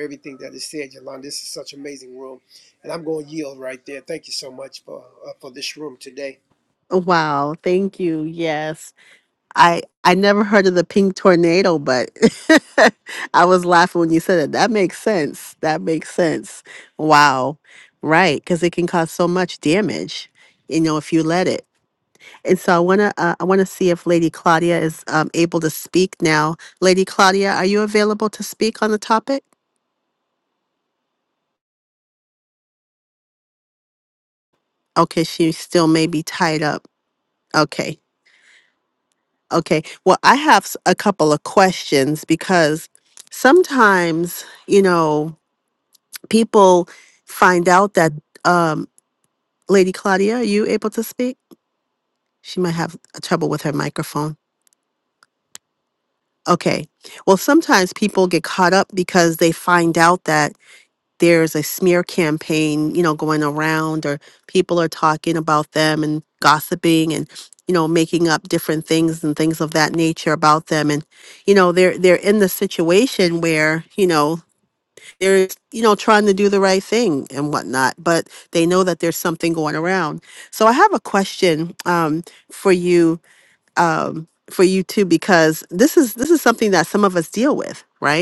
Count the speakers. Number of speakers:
2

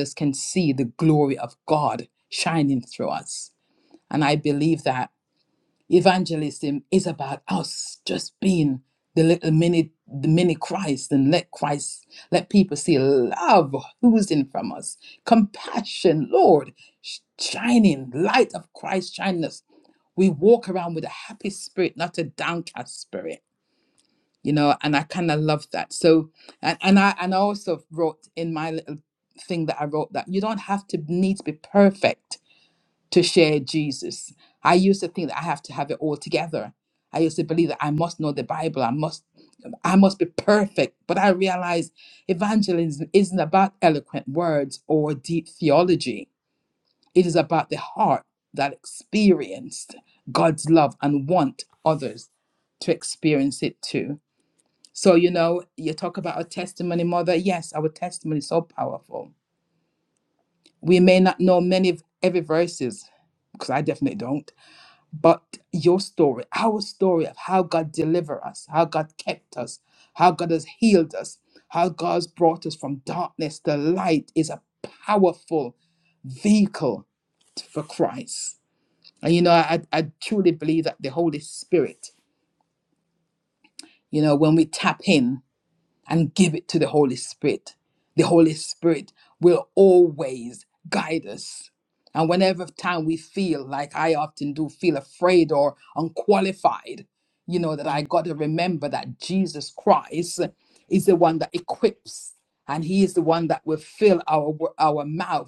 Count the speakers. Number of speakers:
1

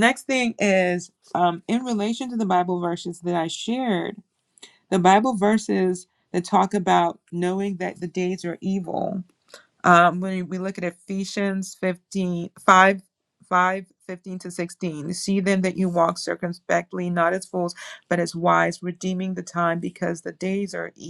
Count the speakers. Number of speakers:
1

